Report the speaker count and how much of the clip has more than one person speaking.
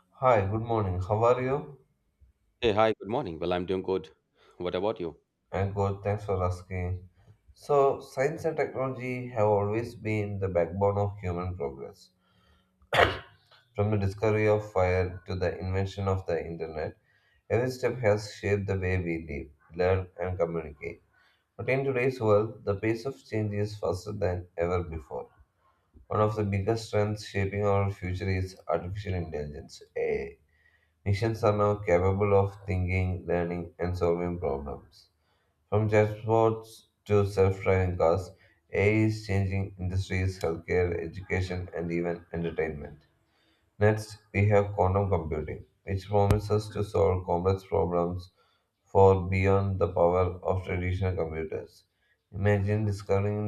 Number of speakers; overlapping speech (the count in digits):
2, no overlap